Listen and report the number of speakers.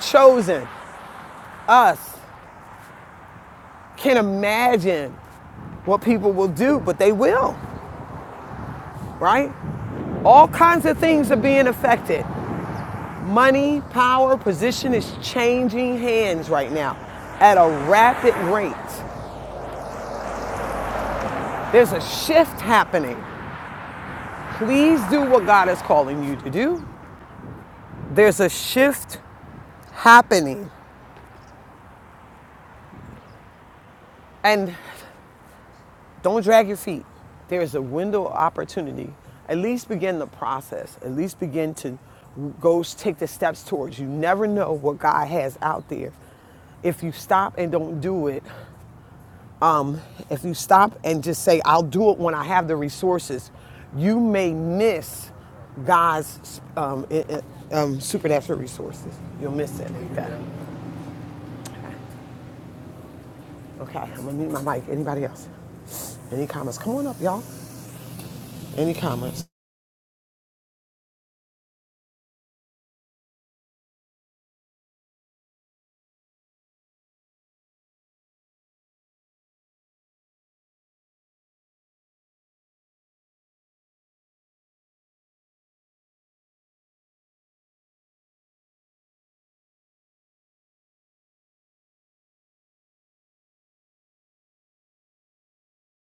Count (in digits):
1